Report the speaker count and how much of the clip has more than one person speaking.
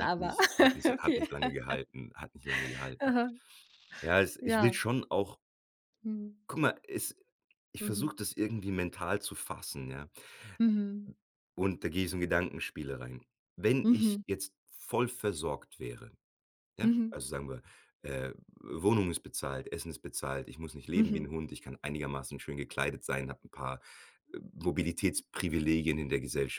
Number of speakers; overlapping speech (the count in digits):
2, about 9%